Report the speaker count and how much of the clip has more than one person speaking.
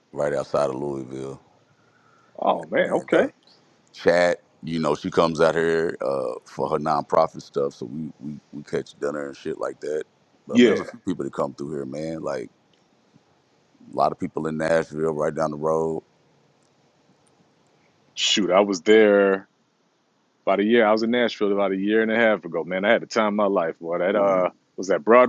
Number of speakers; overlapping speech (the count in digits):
2, about 3%